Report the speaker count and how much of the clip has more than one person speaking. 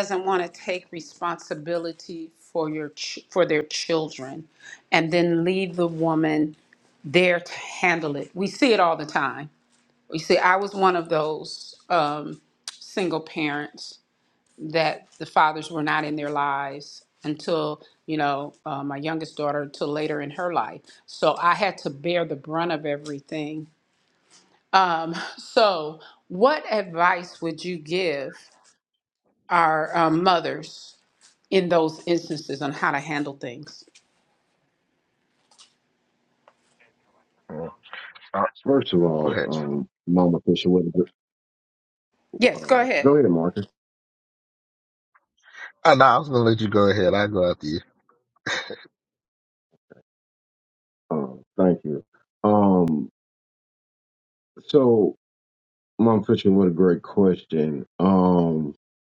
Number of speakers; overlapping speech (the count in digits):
3, about 2%